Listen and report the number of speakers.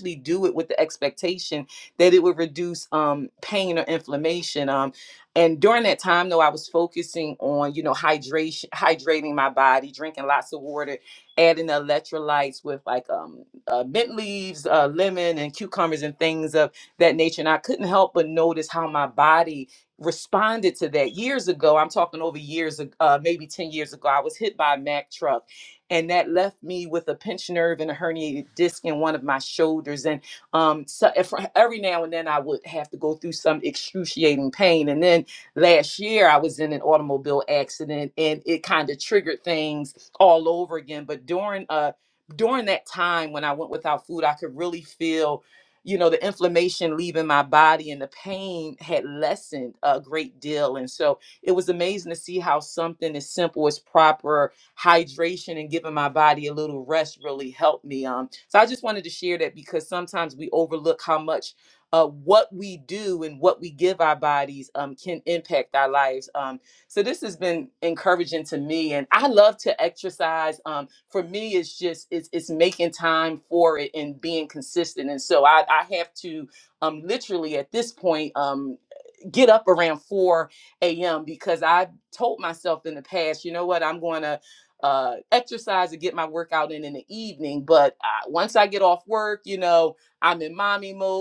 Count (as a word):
one